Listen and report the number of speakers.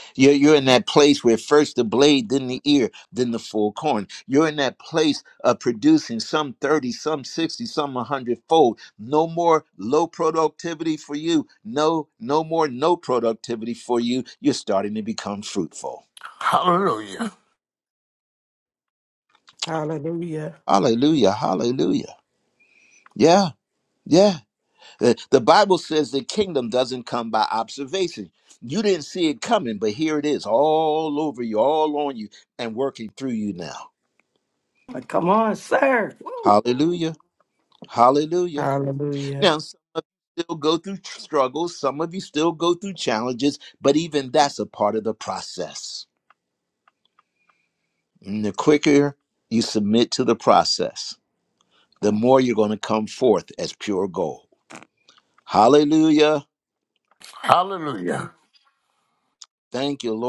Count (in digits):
4